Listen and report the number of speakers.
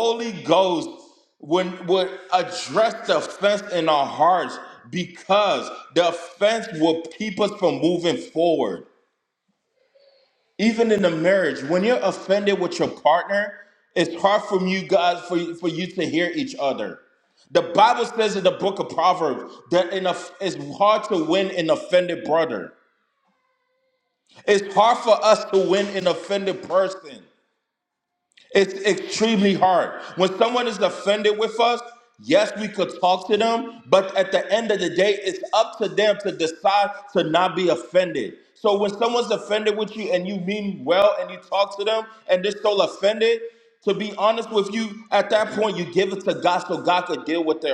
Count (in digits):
1